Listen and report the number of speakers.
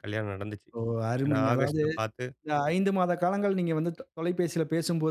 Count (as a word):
two